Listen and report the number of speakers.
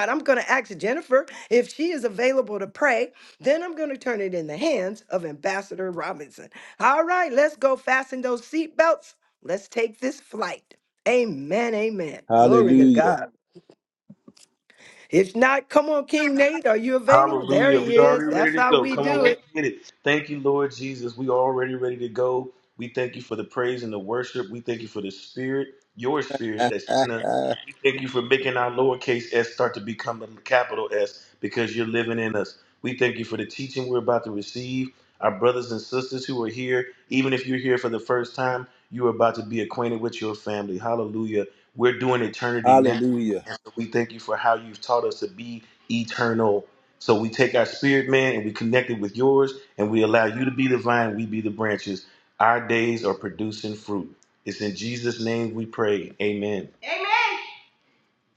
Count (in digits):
3